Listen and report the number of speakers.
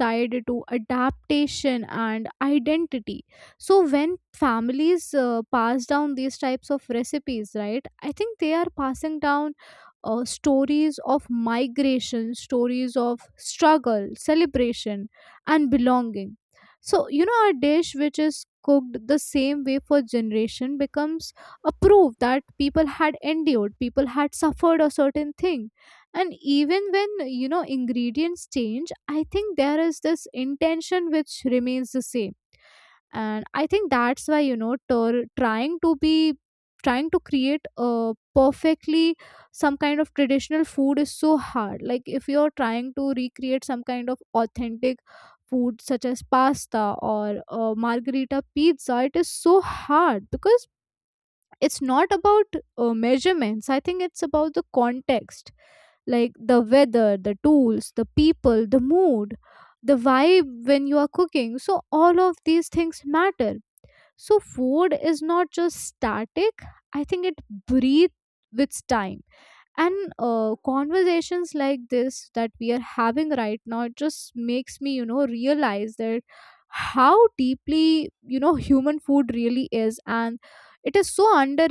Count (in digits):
1